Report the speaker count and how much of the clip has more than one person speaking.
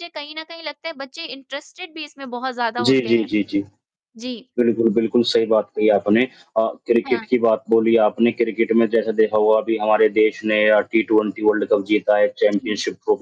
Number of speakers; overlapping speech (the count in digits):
2, about 8%